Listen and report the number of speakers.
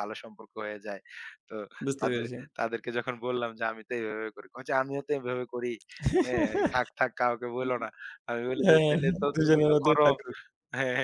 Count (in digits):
2